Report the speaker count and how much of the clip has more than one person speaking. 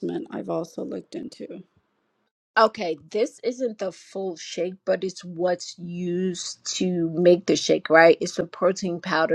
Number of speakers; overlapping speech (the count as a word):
two, no overlap